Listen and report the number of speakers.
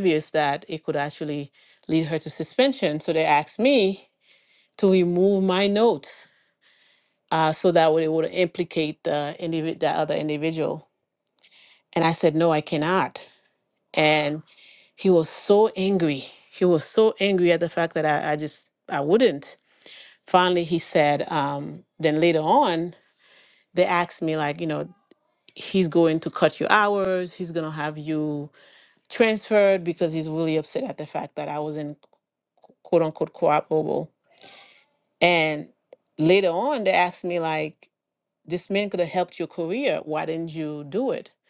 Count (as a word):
one